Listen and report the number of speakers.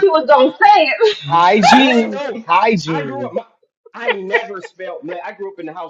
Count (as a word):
three